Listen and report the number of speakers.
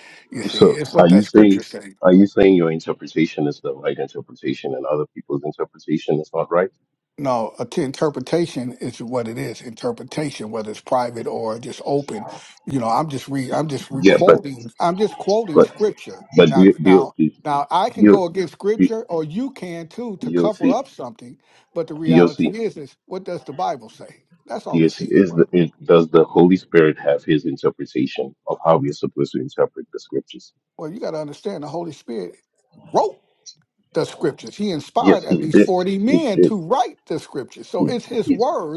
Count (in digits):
2